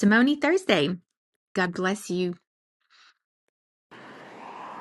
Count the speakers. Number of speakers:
one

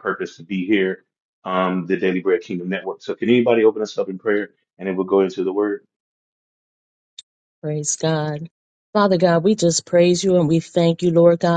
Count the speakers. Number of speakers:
two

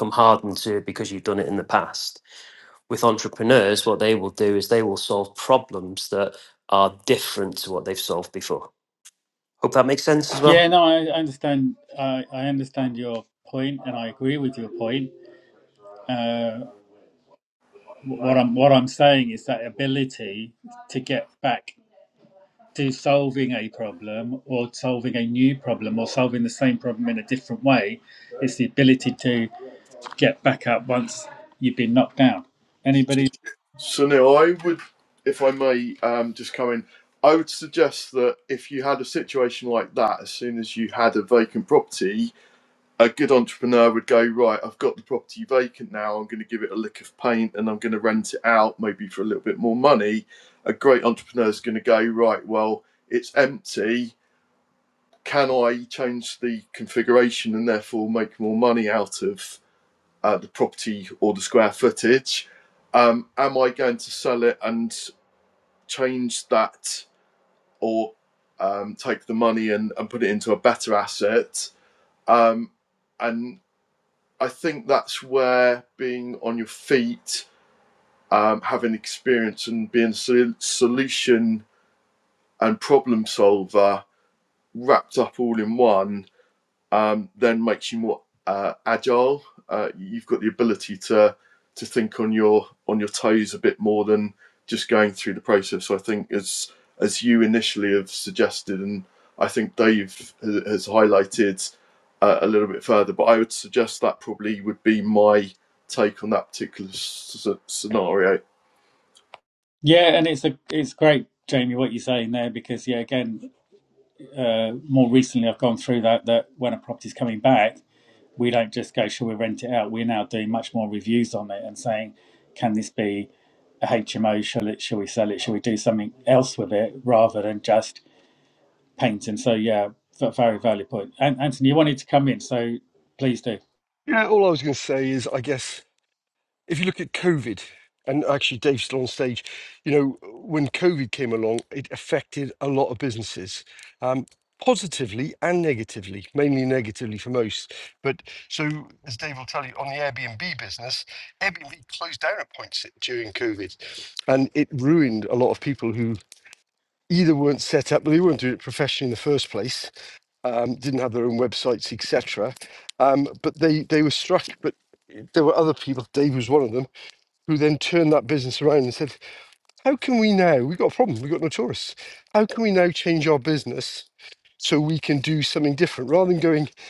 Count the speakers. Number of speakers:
four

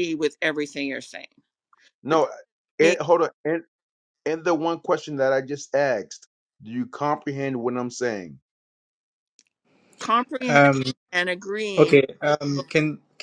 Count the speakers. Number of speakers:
three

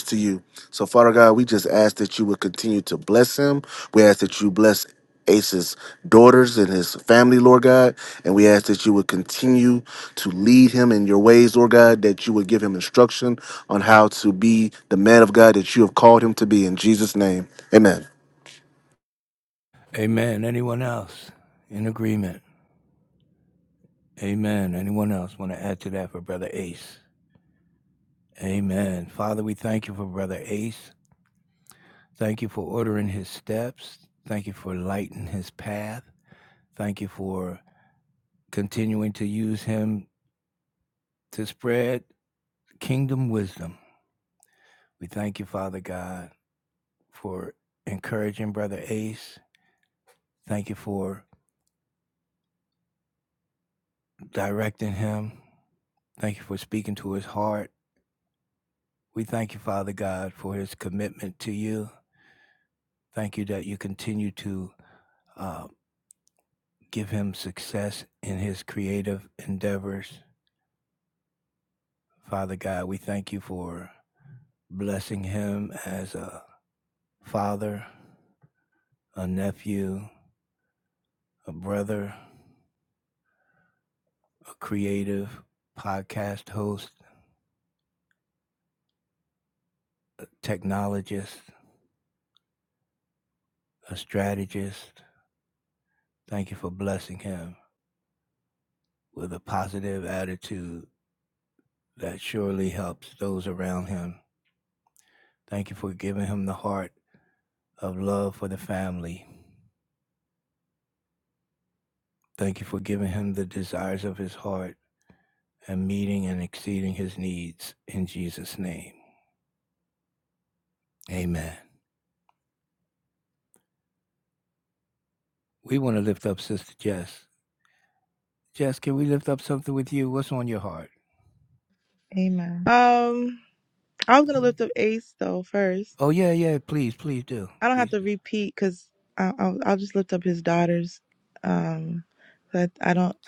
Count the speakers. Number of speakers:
three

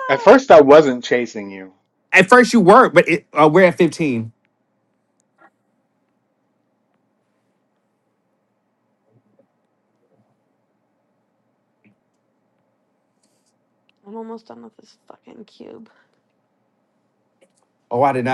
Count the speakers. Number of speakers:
three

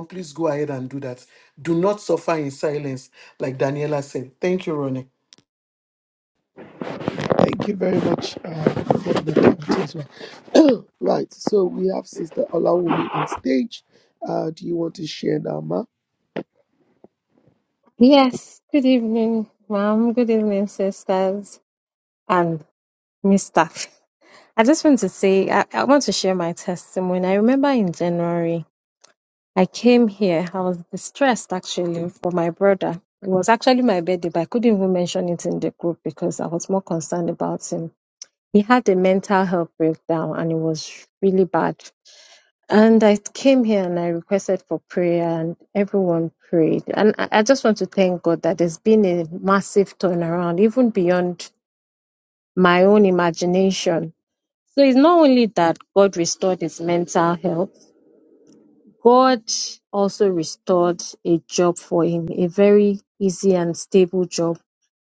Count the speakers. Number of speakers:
three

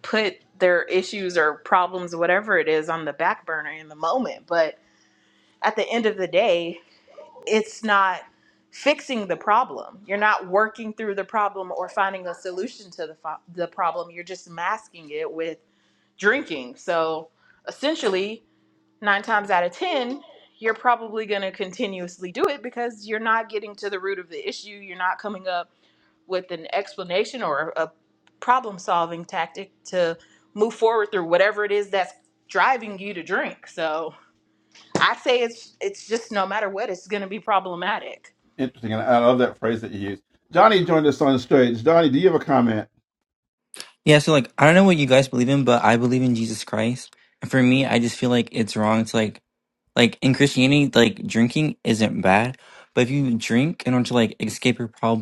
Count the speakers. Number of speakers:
three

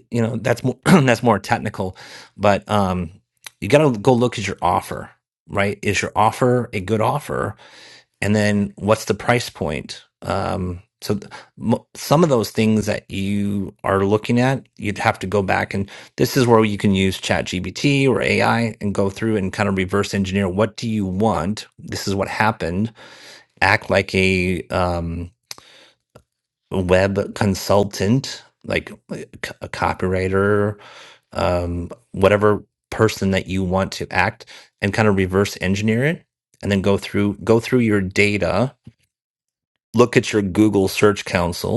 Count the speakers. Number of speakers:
one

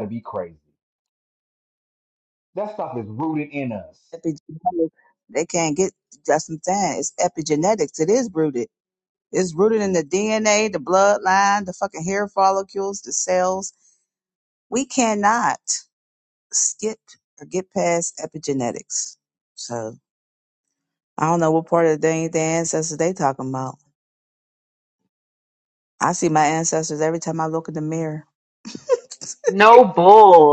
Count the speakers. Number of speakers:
three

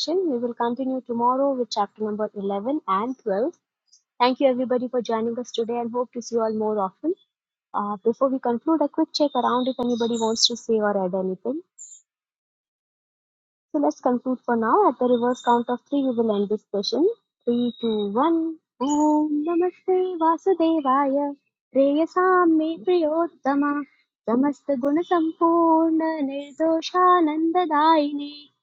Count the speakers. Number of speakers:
one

